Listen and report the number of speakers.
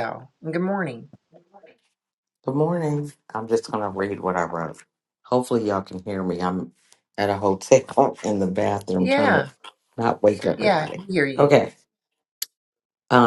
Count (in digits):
2